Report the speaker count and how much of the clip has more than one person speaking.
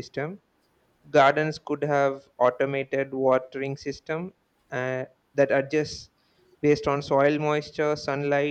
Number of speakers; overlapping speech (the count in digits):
1, no overlap